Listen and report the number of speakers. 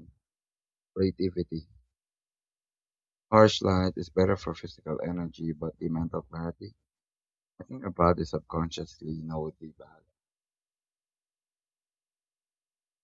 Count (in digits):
1